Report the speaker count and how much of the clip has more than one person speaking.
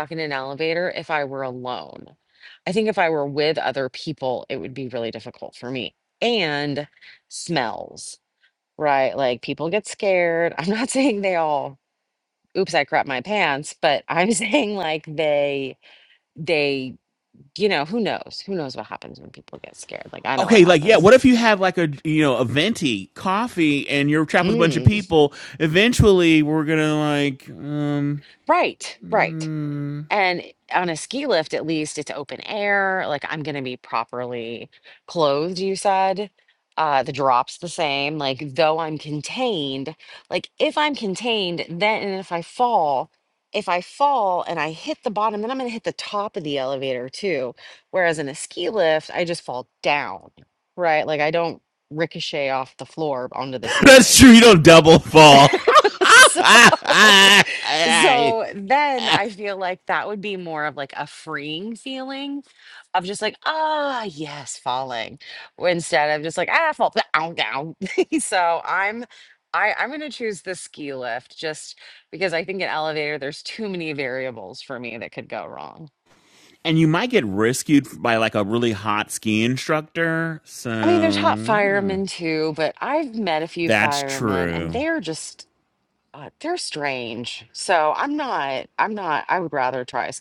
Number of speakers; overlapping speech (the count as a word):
two, about 4%